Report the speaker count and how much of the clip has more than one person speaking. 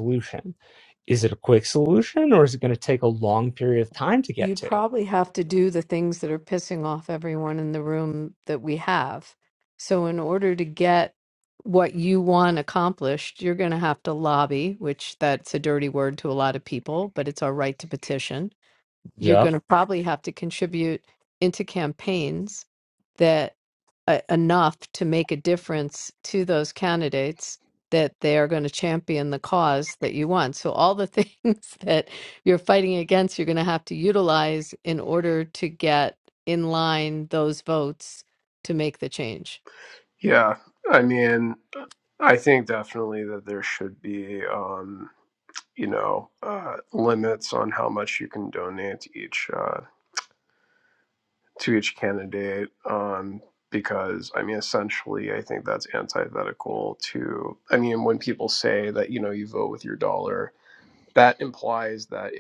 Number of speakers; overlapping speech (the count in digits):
3, about 1%